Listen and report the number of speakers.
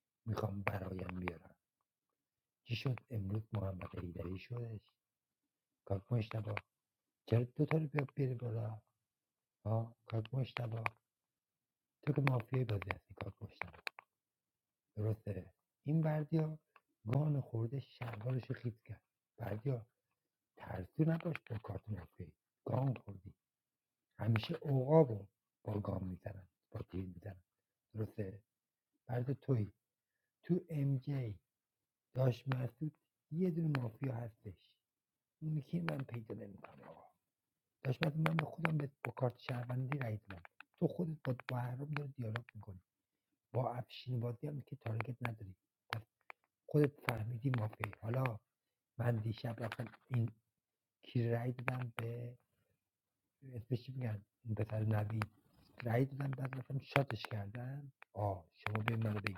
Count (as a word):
one